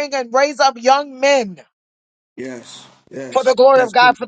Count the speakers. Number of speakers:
two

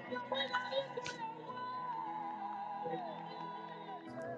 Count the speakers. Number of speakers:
zero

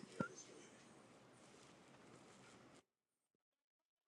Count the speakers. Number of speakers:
zero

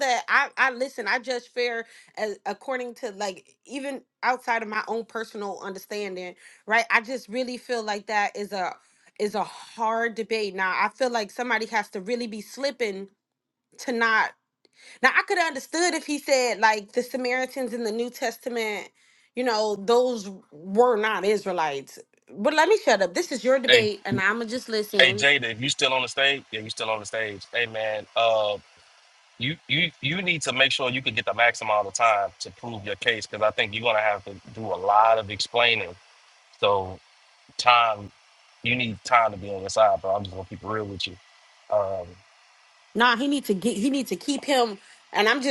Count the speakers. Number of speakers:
two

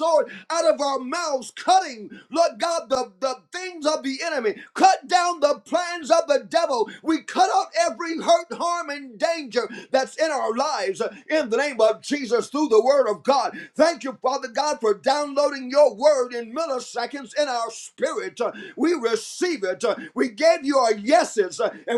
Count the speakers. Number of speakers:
one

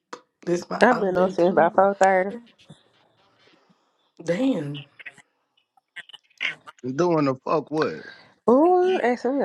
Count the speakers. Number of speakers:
three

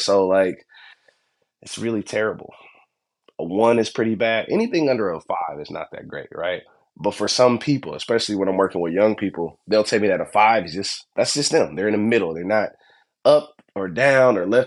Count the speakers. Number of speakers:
one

